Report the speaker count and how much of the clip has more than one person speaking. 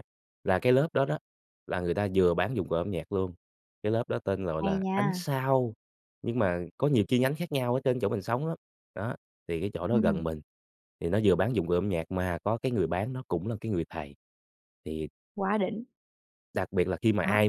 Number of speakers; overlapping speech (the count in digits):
2, about 6%